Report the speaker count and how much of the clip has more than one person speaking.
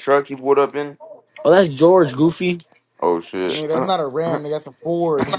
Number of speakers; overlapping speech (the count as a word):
three, about 1%